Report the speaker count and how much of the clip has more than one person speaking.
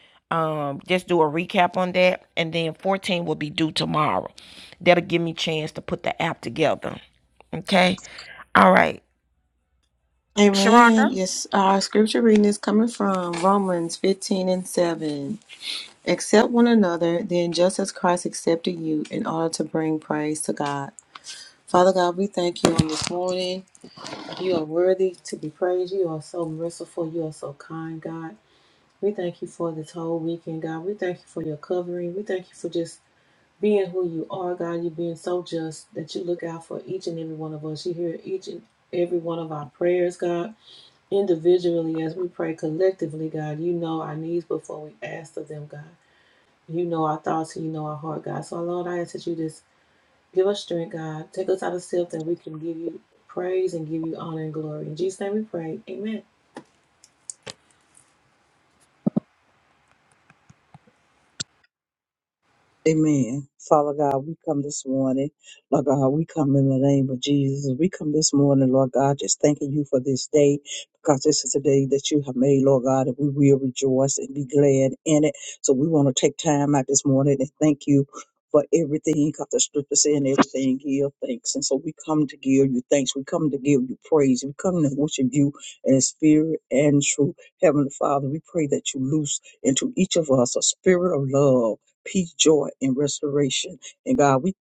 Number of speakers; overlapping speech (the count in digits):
3, about 1%